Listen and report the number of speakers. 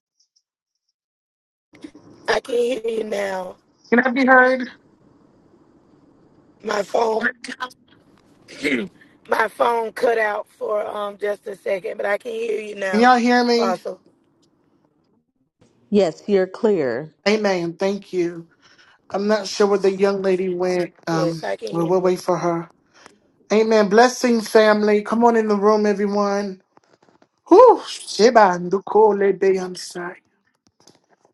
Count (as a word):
three